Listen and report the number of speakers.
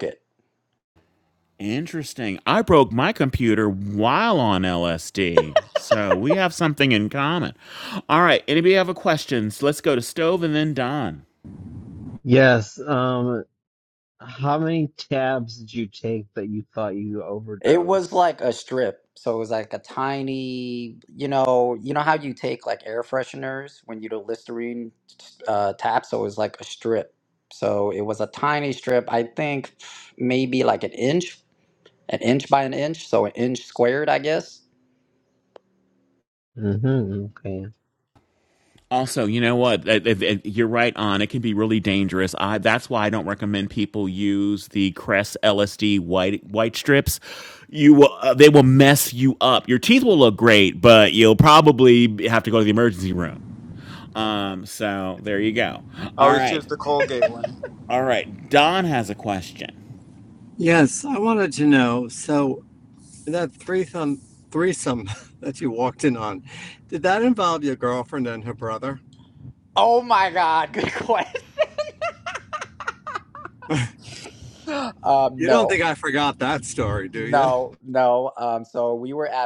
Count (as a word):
five